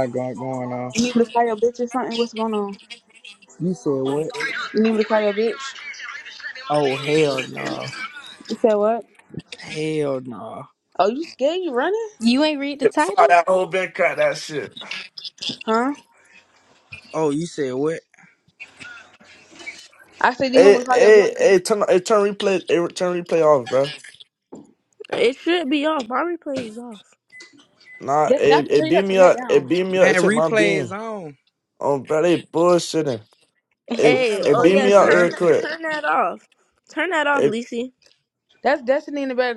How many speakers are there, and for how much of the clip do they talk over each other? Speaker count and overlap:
5, about 13%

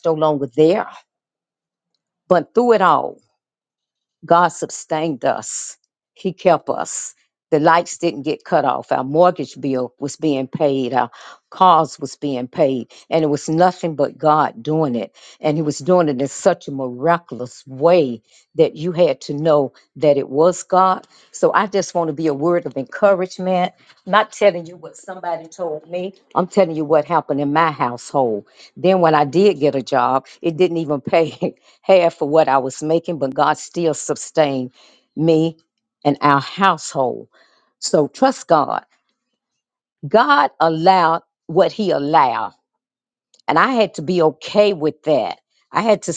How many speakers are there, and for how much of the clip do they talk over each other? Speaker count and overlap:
1, no overlap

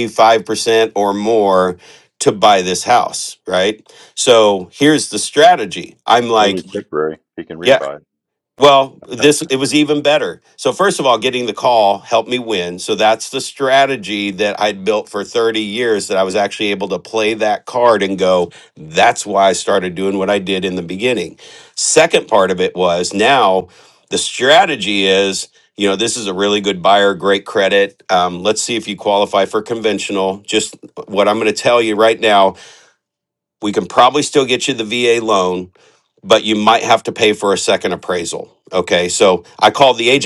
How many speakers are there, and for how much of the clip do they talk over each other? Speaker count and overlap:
2, about 1%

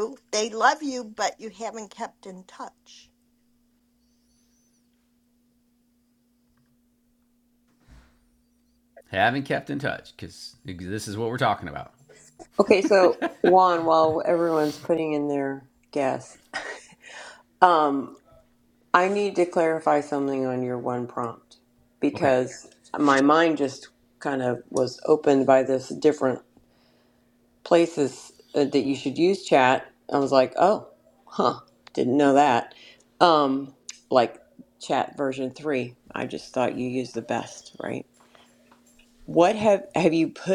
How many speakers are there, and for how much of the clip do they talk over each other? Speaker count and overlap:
3, about 1%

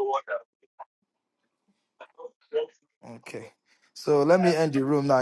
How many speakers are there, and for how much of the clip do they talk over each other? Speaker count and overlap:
2, about 18%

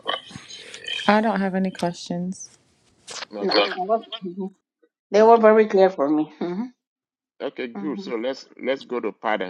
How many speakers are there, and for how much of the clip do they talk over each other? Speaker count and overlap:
3, about 7%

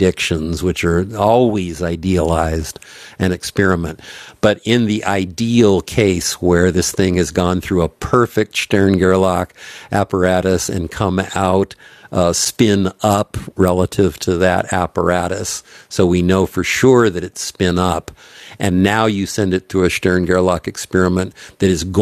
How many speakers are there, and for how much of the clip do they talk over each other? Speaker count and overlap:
1, no overlap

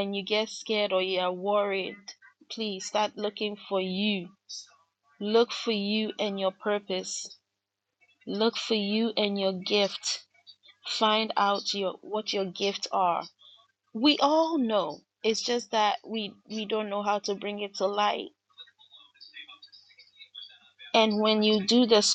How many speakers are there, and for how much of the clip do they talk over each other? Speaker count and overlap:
1, no overlap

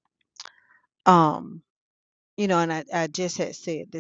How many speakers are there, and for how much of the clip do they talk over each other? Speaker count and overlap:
1, no overlap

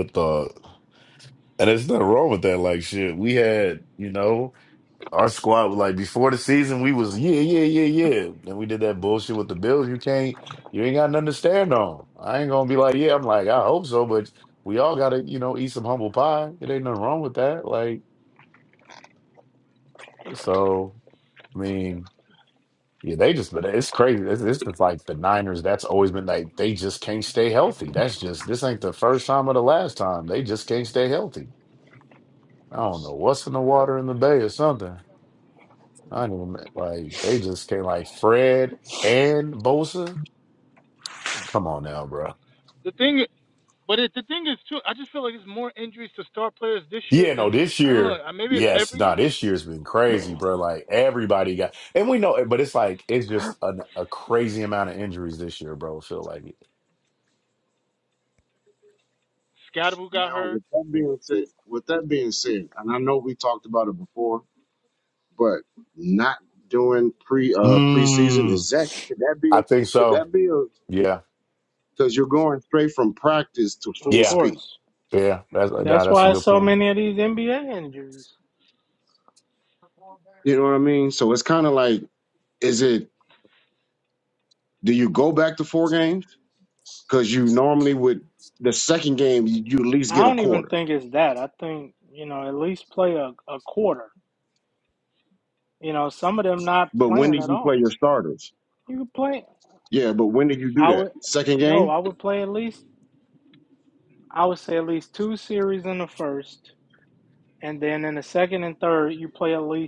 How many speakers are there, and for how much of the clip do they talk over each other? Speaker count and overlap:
4, about 7%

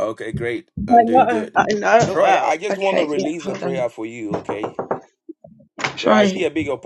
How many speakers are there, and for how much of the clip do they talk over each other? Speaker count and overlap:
2, about 43%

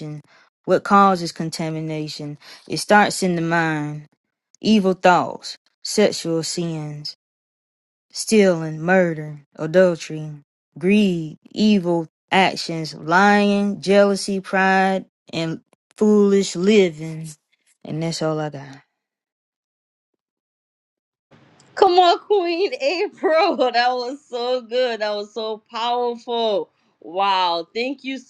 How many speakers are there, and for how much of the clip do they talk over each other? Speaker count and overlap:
2, no overlap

